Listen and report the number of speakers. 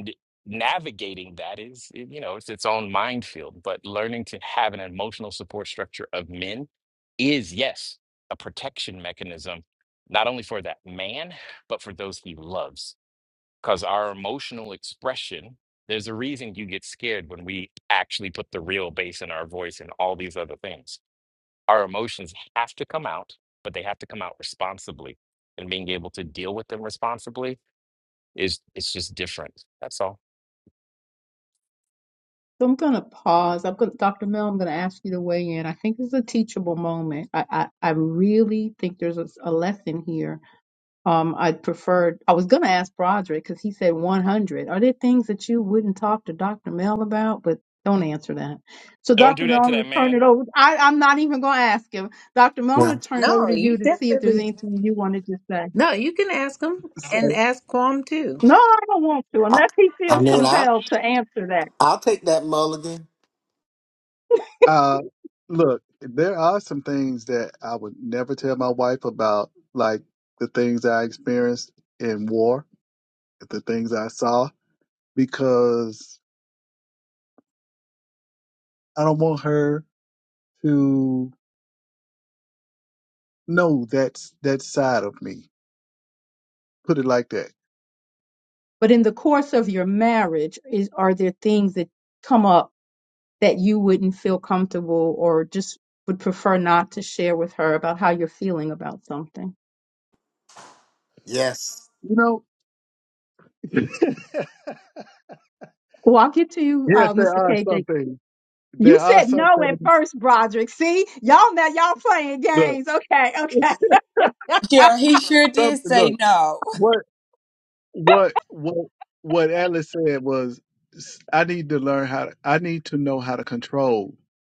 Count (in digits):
6